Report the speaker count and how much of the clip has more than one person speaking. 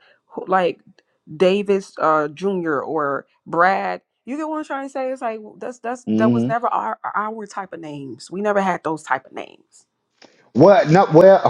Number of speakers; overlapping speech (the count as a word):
two, about 4%